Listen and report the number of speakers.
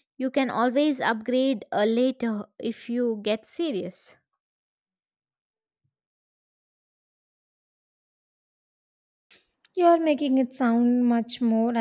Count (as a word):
two